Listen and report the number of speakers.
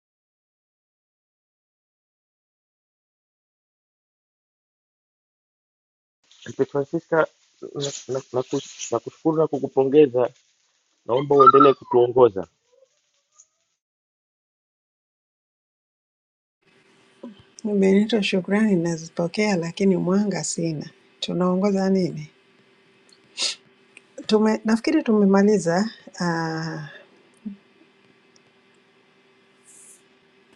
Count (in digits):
2